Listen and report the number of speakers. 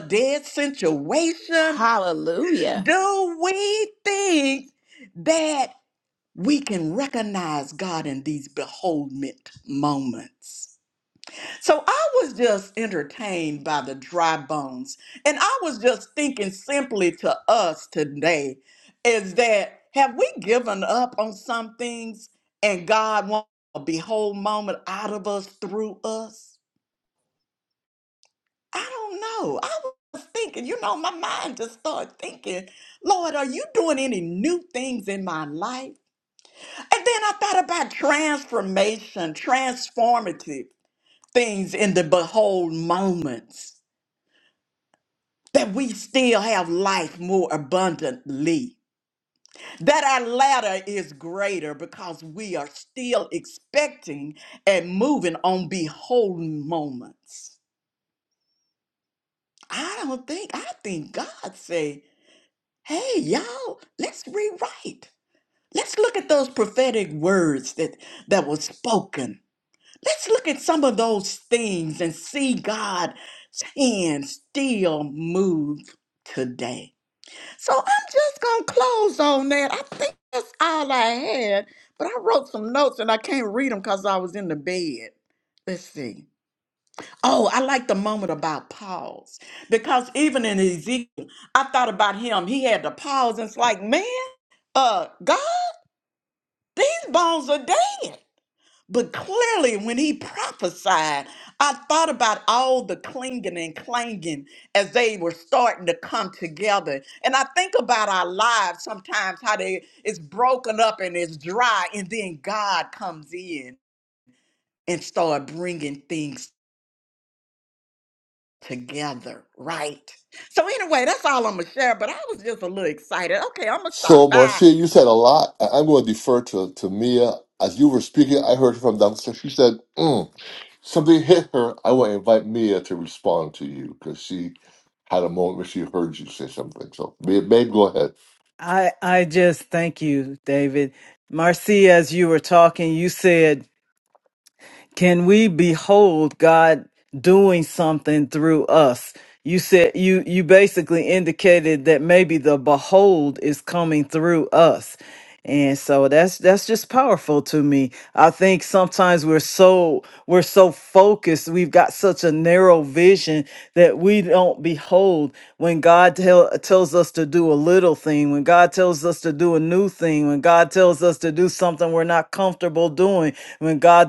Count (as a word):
four